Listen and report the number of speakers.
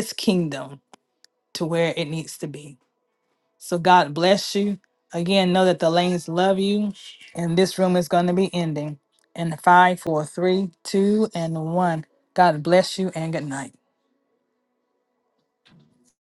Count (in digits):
1